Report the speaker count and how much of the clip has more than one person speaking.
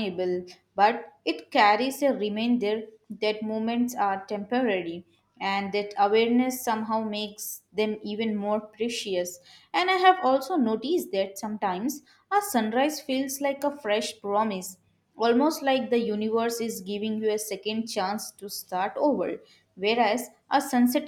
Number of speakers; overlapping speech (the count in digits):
1, no overlap